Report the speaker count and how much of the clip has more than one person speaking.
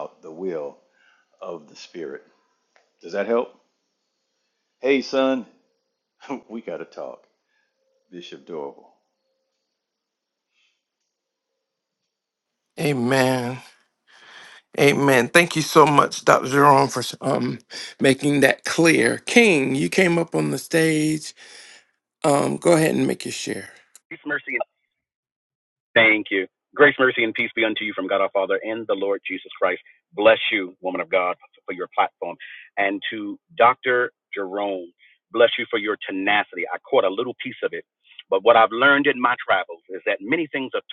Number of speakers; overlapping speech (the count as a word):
three, no overlap